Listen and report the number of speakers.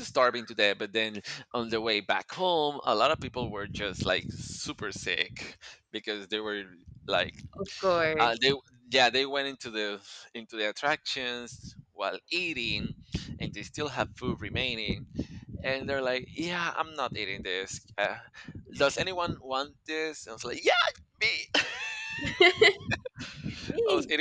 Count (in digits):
2